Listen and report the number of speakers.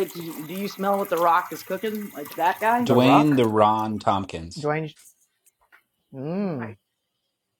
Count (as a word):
three